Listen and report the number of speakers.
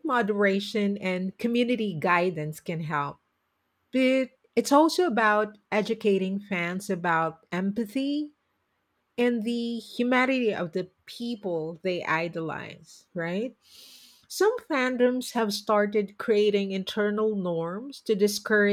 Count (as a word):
one